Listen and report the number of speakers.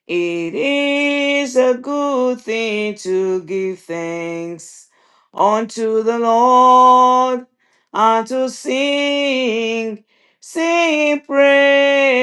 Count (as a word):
one